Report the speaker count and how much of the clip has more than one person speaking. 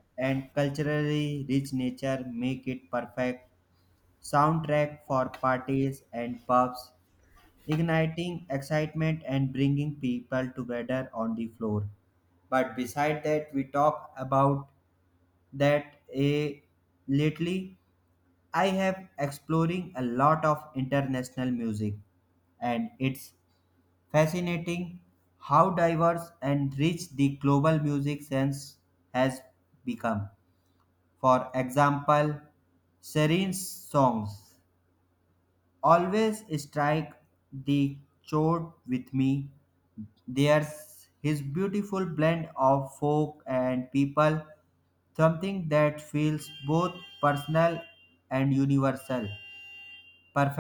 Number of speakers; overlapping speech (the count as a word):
one, no overlap